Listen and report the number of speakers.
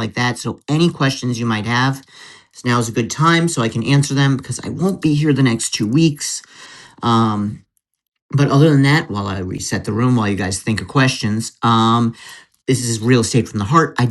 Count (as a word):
one